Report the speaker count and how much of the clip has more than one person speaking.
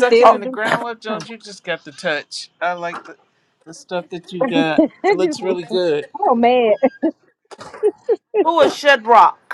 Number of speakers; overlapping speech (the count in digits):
3, about 7%